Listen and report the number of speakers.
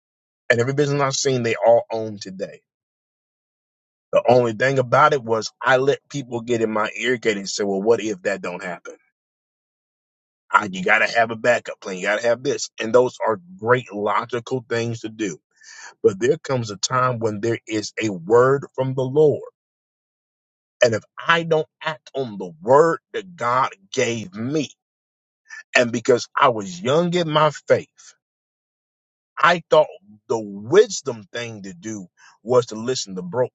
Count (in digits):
1